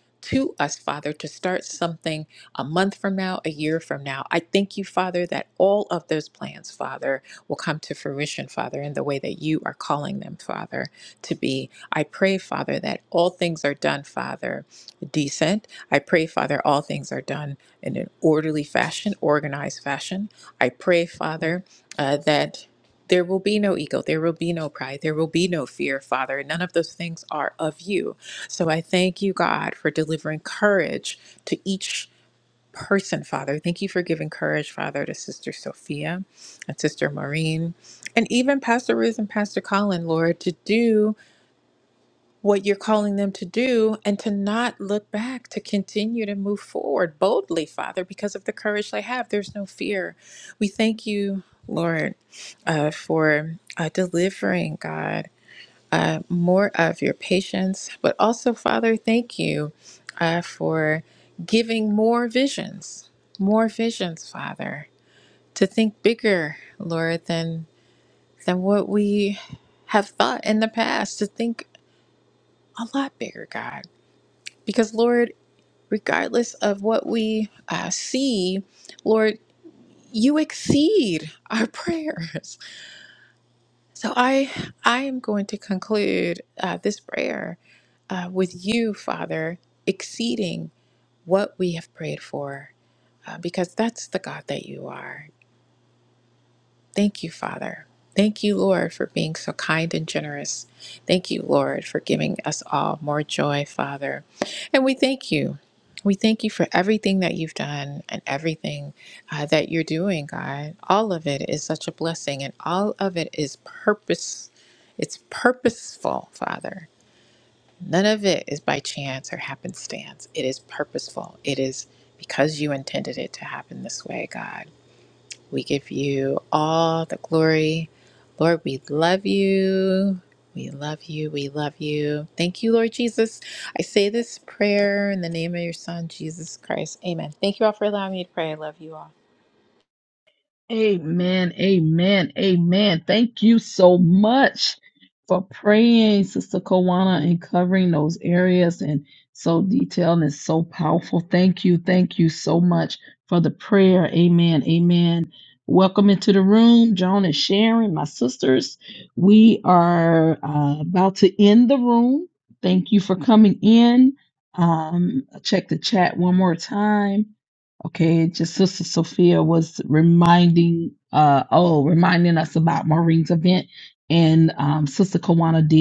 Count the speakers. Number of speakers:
two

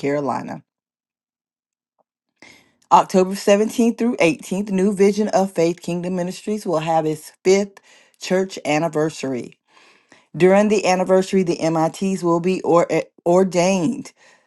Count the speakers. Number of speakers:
one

